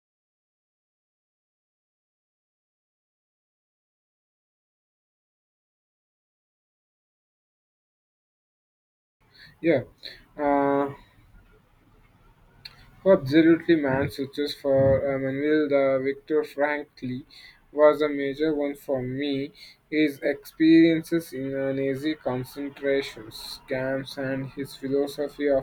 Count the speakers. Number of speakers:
1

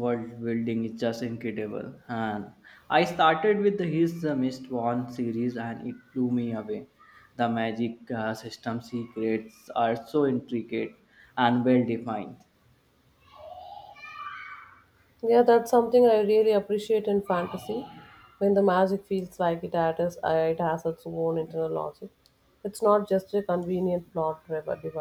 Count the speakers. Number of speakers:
2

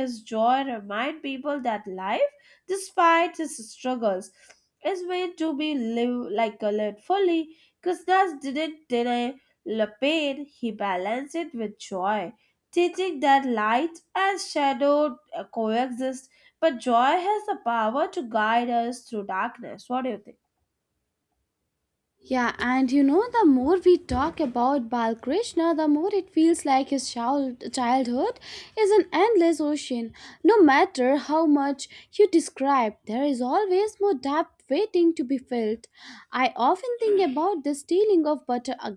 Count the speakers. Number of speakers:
2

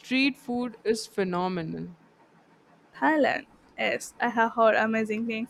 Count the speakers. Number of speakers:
2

